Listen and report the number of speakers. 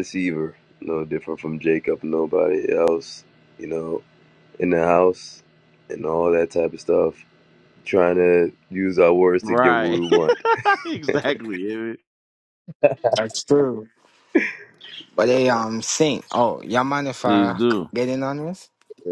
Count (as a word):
three